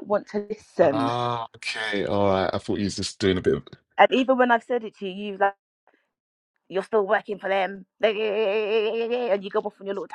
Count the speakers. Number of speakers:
two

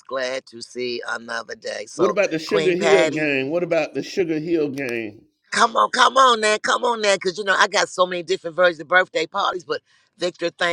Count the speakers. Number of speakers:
two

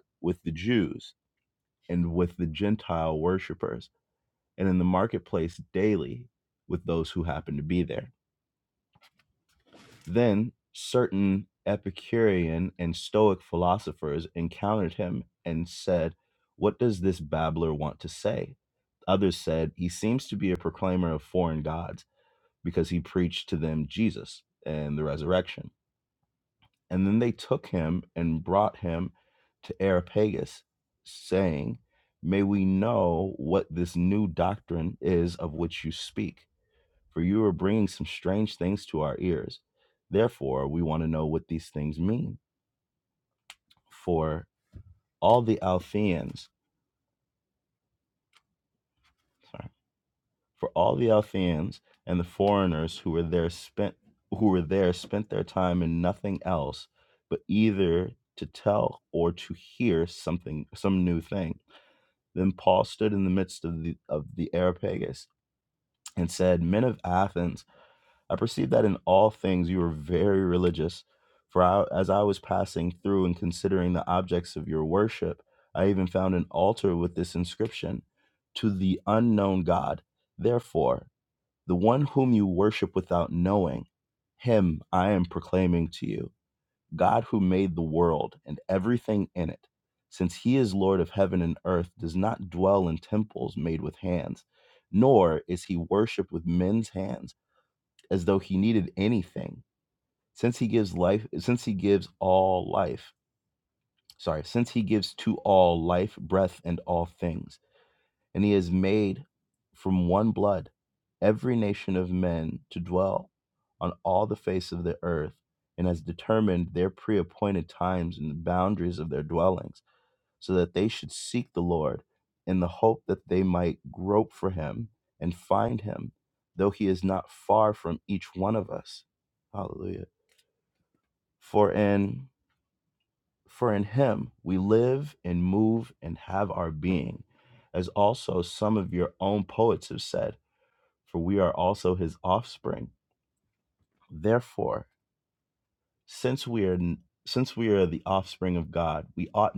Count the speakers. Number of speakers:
one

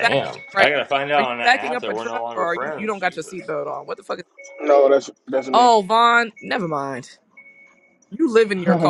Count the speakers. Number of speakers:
three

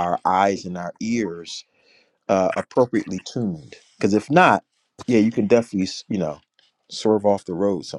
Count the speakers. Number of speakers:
one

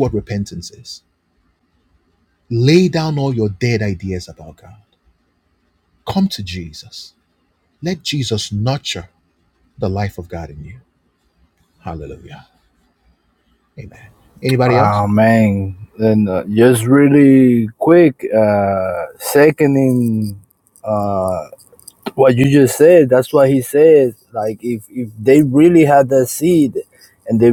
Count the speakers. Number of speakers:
two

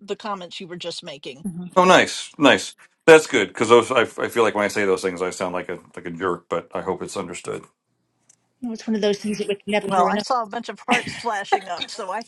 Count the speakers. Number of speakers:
three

